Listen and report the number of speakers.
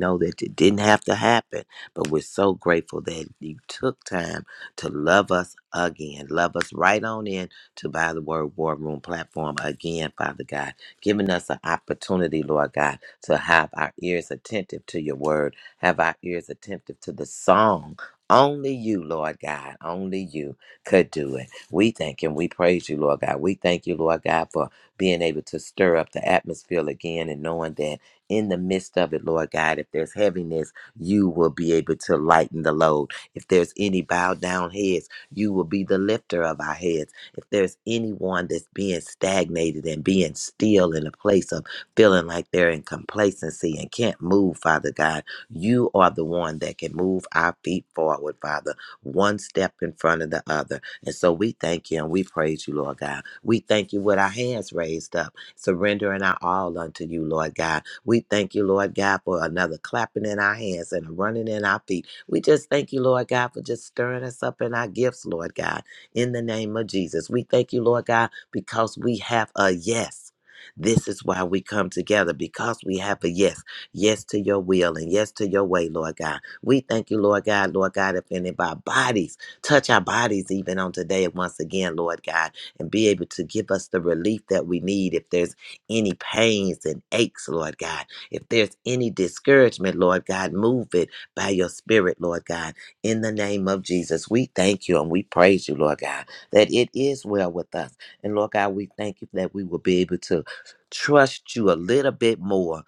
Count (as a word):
one